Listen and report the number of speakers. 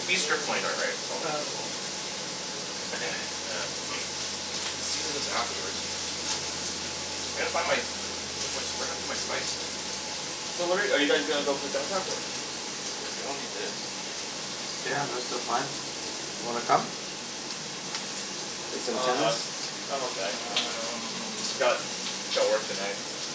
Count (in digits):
3